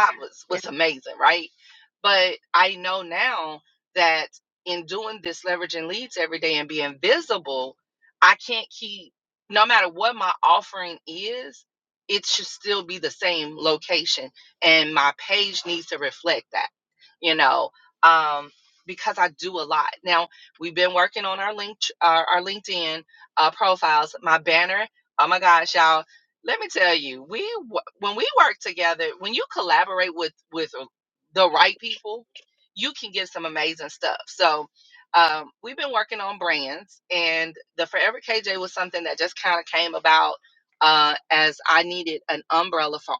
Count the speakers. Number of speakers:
1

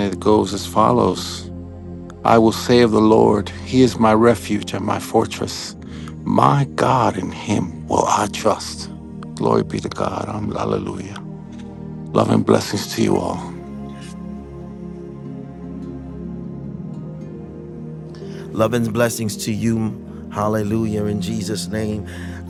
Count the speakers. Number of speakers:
2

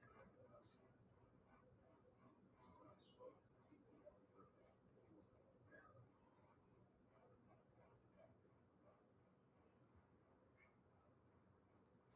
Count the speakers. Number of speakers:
0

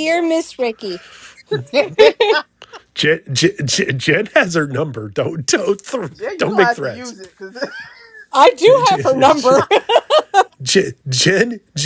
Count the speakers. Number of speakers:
3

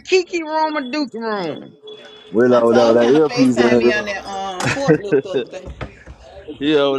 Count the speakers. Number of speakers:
3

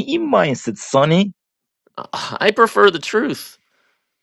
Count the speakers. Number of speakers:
2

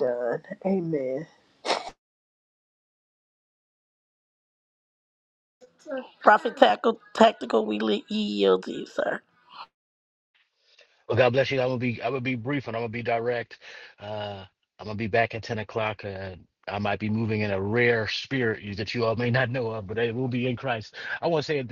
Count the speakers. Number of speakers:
3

